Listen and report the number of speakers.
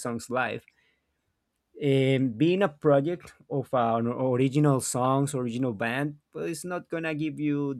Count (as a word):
one